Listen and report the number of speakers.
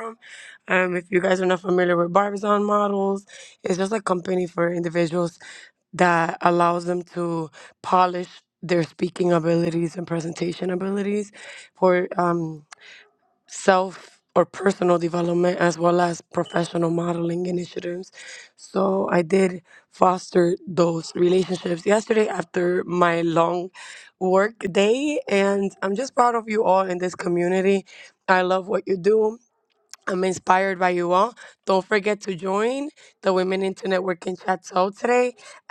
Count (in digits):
1